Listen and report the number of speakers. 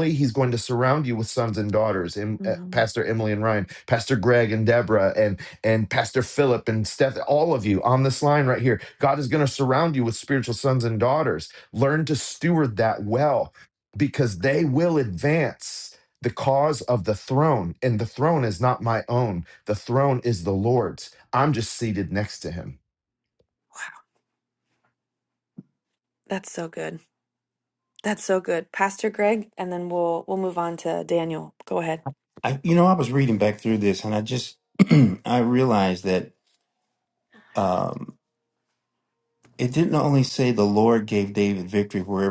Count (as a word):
three